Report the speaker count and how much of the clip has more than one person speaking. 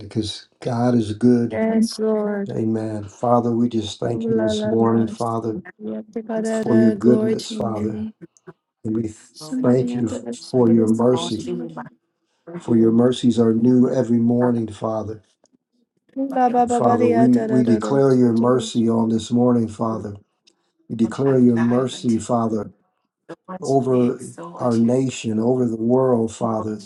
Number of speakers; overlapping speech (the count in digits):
3, about 40%